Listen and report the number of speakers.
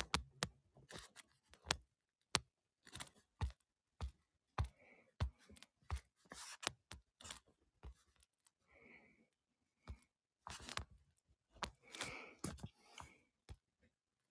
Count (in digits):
0